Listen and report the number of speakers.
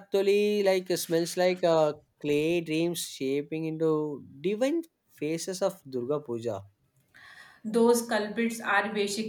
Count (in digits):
2